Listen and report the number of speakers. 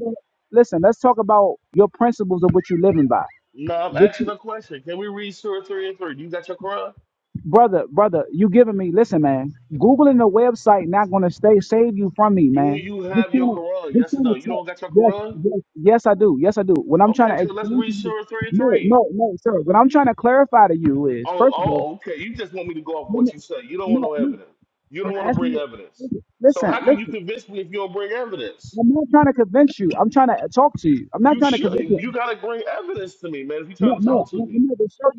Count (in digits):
2